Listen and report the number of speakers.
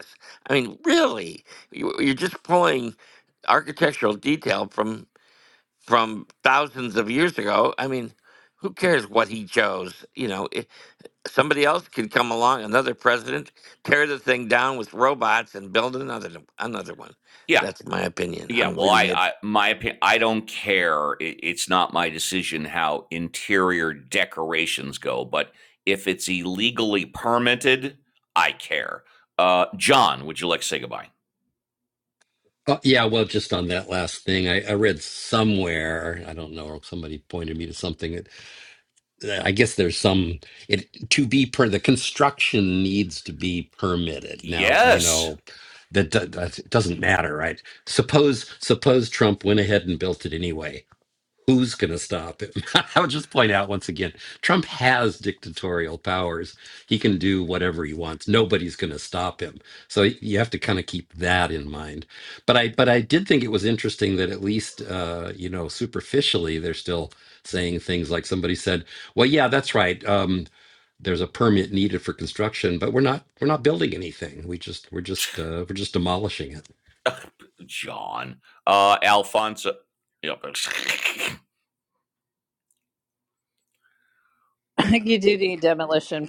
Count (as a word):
four